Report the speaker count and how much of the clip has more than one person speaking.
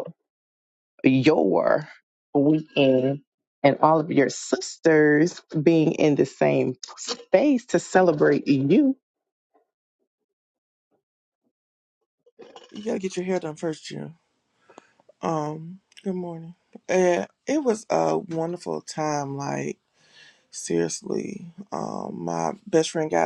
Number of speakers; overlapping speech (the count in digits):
2, no overlap